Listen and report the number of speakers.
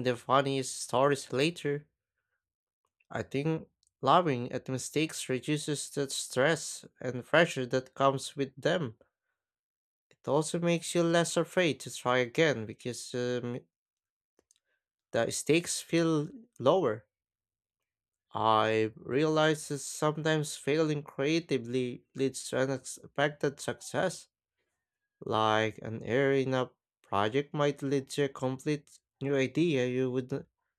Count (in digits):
1